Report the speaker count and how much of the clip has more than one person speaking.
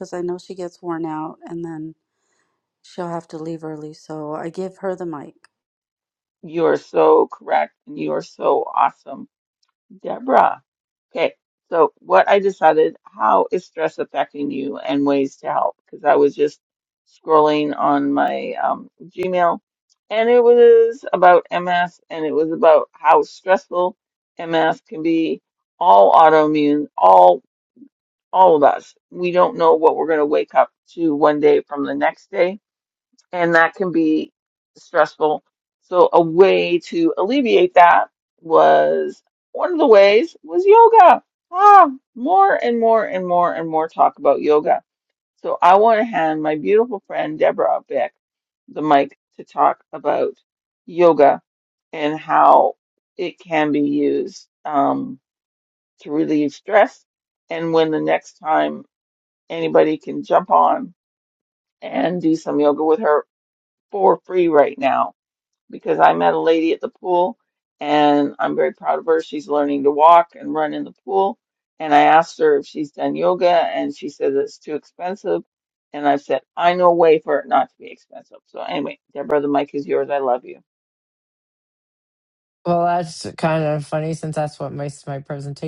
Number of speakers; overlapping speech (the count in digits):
3, no overlap